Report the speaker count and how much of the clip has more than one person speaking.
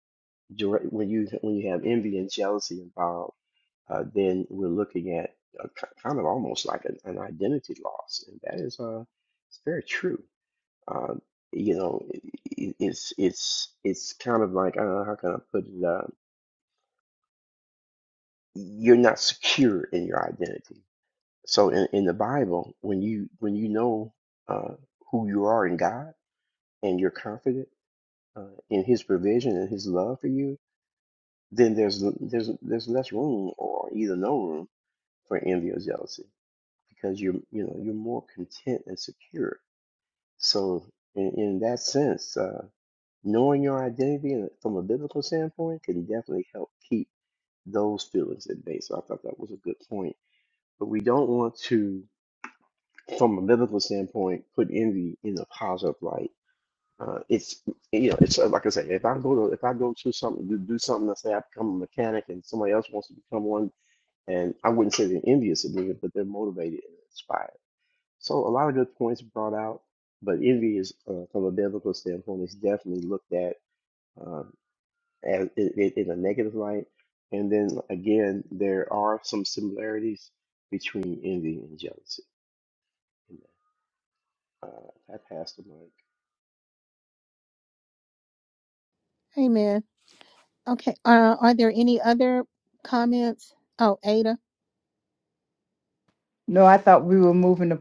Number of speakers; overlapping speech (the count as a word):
three, no overlap